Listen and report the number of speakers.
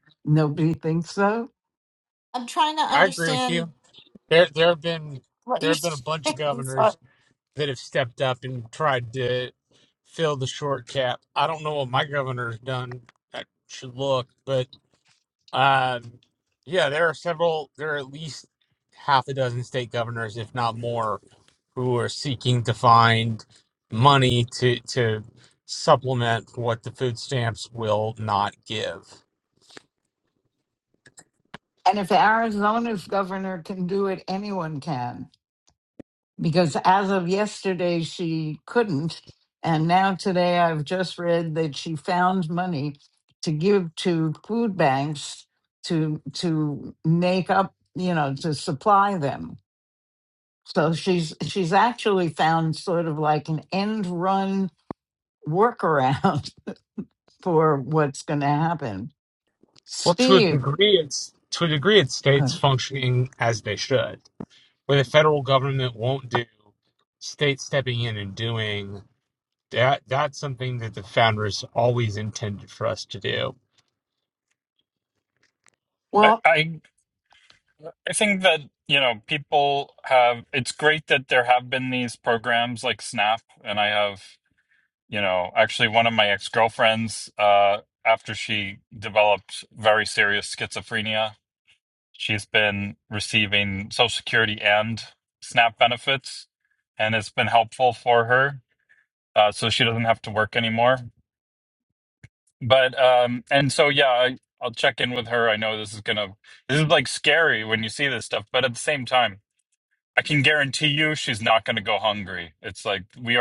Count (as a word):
four